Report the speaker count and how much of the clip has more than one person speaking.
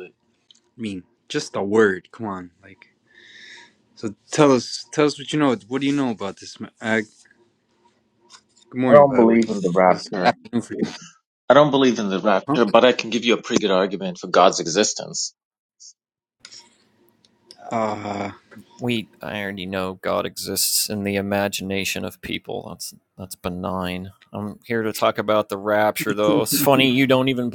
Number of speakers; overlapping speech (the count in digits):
3, about 5%